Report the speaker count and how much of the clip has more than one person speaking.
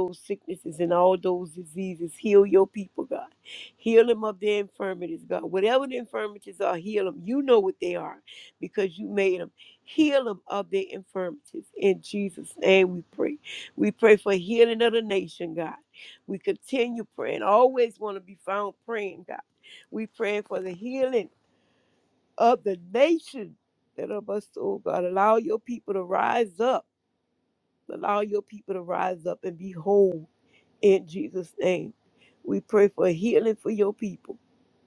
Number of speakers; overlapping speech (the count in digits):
1, no overlap